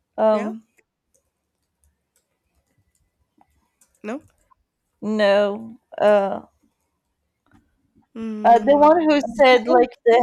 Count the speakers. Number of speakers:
two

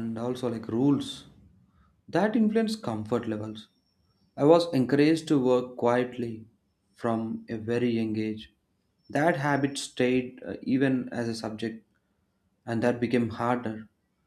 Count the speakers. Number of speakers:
one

